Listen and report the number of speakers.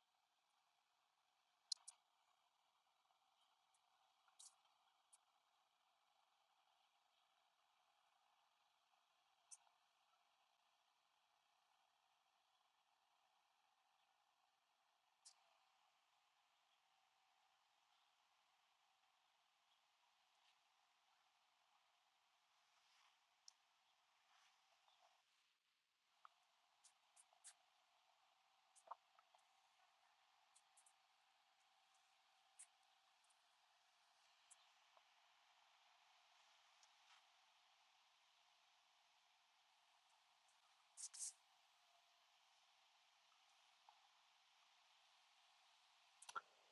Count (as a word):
zero